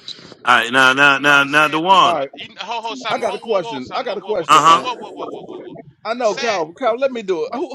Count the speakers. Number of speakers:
three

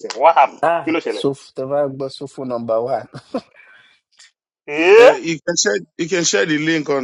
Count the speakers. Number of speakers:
three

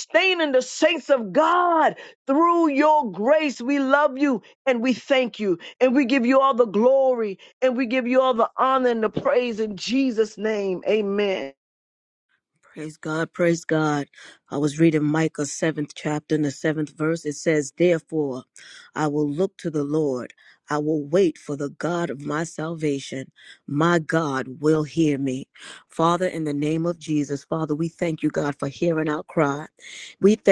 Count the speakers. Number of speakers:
two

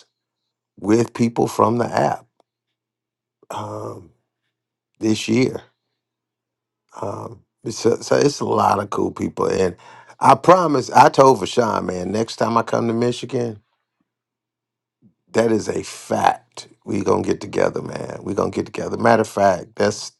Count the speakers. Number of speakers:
one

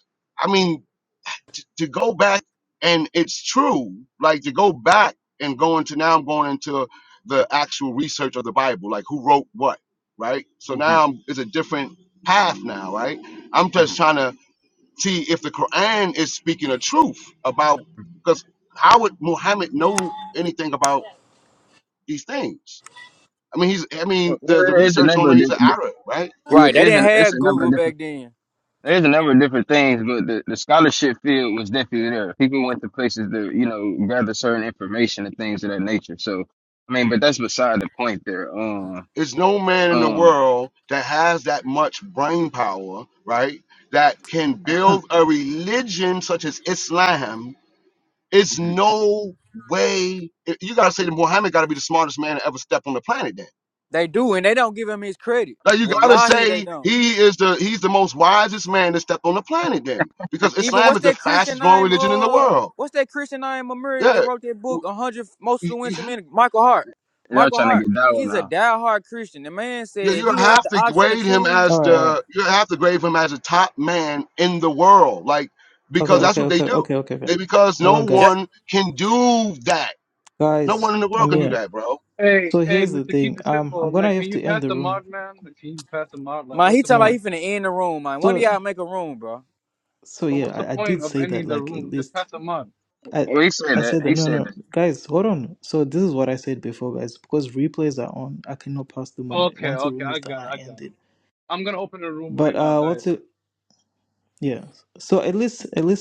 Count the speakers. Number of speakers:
five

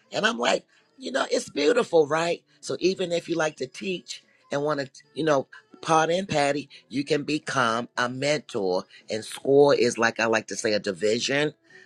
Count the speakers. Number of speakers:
one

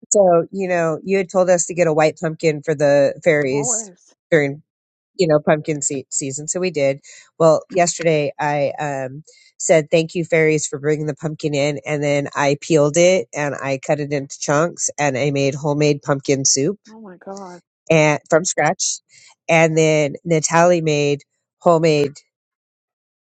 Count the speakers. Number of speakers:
two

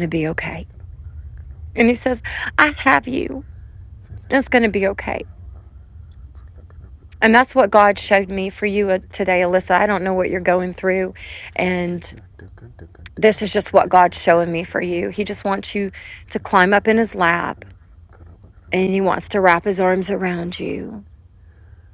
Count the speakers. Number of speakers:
one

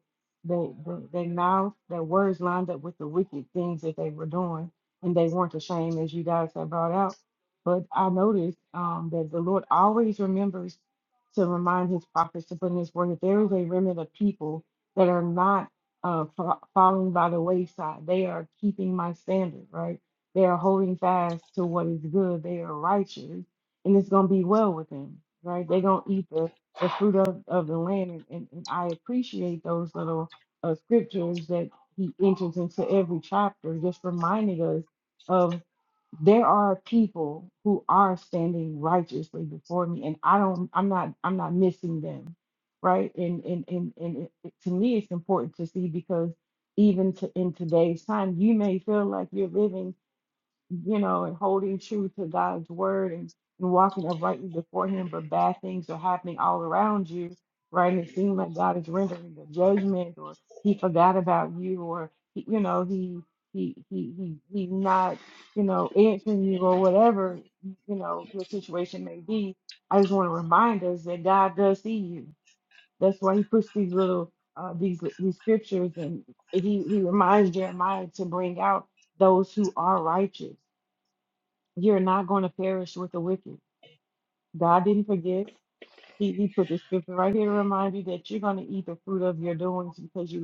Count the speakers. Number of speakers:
one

